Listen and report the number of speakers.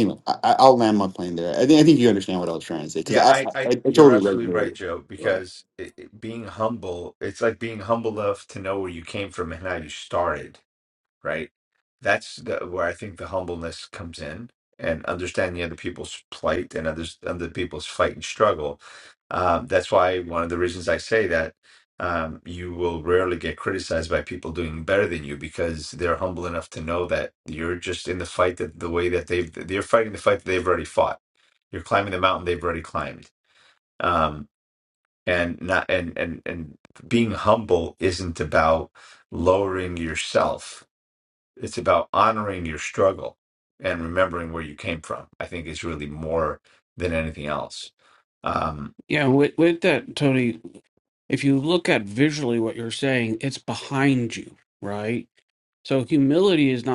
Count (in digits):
3